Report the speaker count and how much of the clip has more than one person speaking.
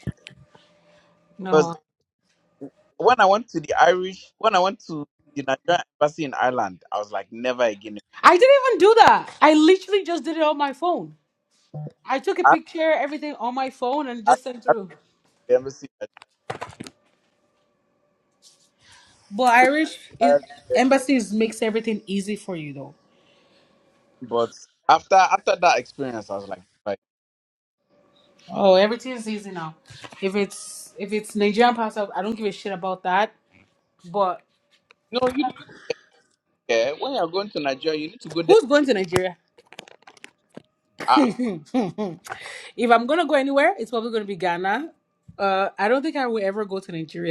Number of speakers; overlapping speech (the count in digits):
2, about 1%